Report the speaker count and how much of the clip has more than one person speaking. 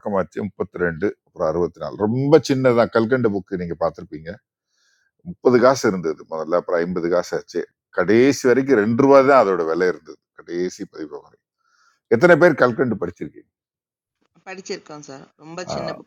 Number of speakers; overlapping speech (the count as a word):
two, about 2%